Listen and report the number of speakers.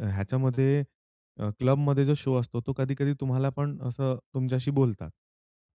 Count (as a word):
one